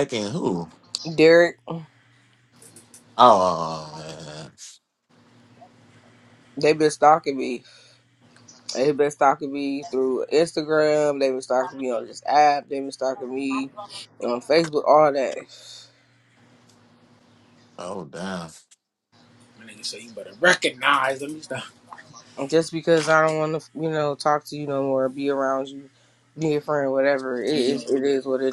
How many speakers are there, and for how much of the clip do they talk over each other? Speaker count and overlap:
3, about 1%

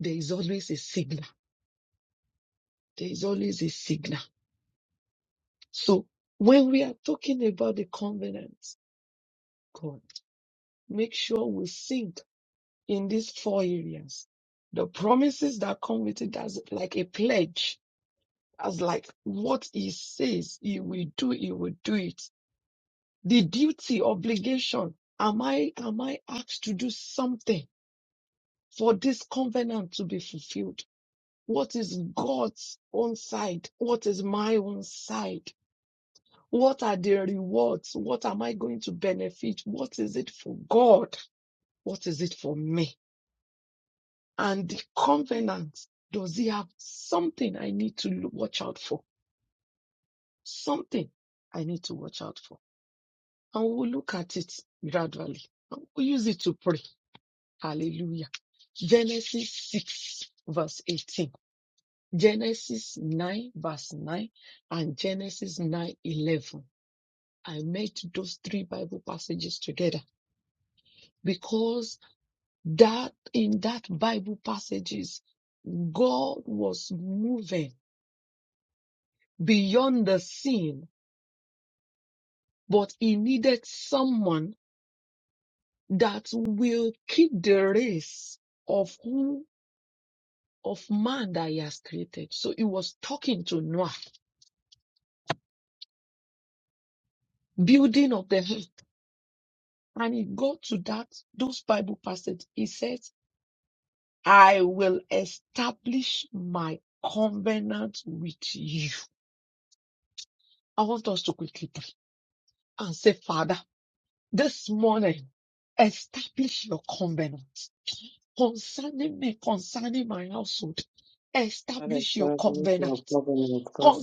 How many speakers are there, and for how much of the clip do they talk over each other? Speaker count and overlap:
2, about 1%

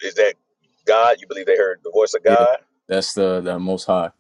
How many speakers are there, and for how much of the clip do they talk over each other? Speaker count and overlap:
2, about 5%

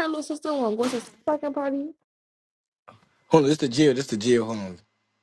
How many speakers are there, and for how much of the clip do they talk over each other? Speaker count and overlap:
2, no overlap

